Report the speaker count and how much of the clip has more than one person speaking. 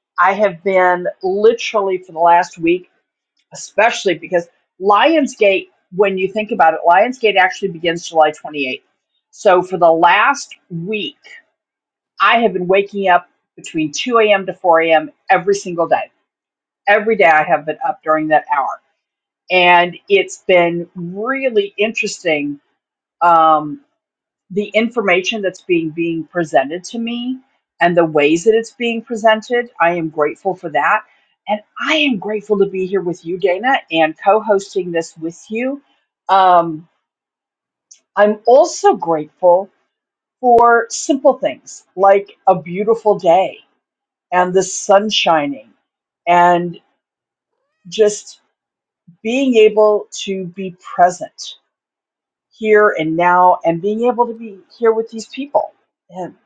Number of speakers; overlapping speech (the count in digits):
1, no overlap